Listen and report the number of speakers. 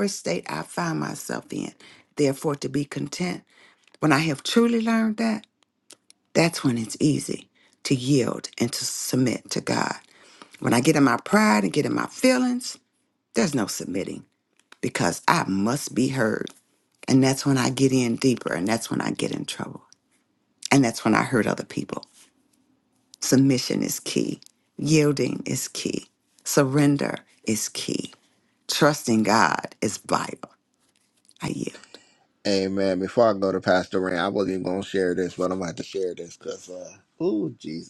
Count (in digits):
2